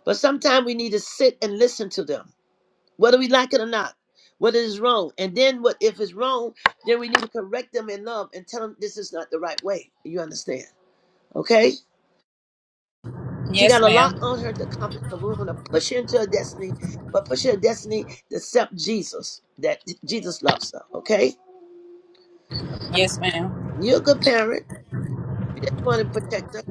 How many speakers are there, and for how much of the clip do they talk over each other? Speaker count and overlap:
2, about 3%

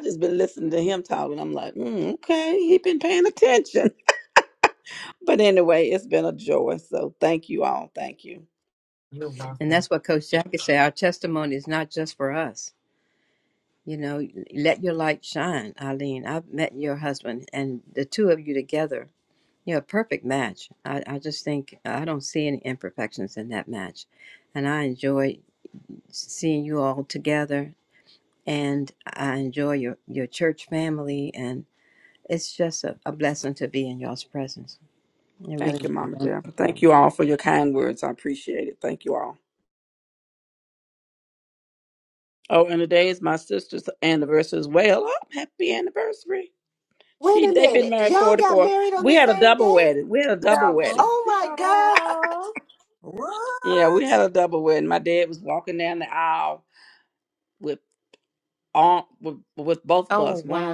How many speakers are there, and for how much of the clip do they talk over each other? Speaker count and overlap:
4, about 10%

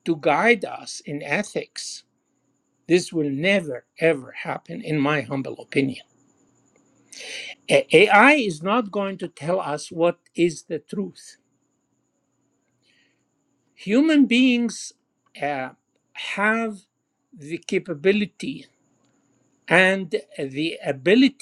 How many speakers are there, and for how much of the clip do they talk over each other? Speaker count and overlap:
1, no overlap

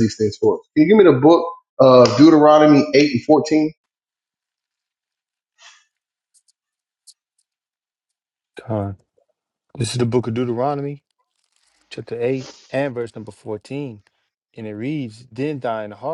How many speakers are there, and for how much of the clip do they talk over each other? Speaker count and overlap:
2, no overlap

